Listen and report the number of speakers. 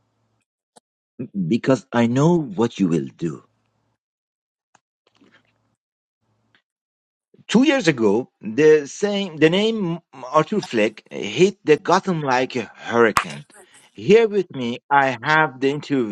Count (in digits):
1